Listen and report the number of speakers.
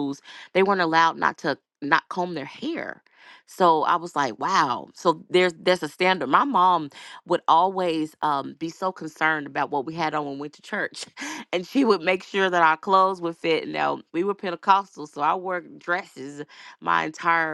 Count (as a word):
one